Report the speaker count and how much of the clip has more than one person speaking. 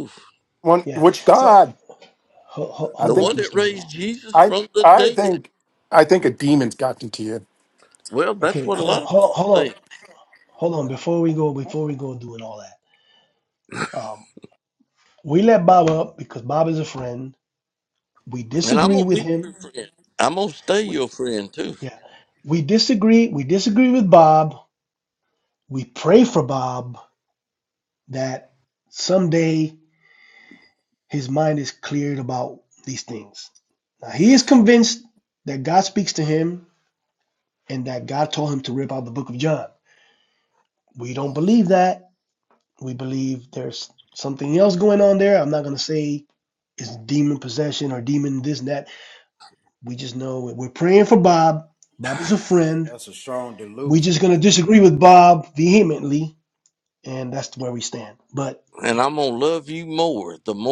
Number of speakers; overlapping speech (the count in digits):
4, about 7%